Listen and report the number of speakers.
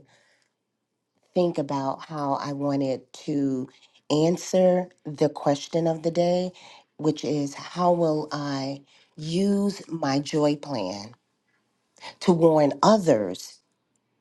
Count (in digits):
1